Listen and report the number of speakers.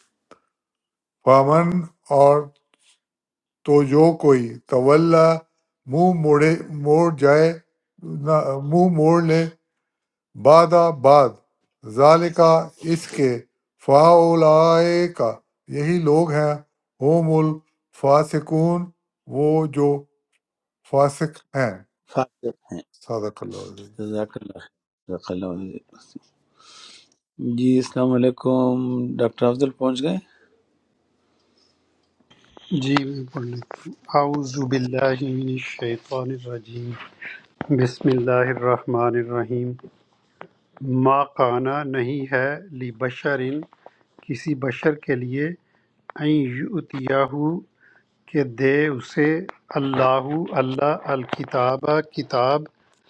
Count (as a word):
three